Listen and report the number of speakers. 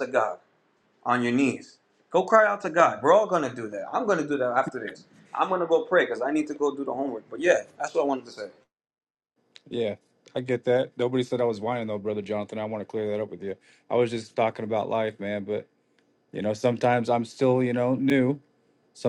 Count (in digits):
2